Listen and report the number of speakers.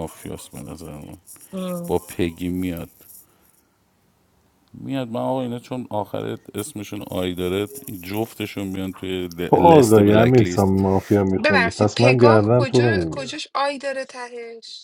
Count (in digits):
3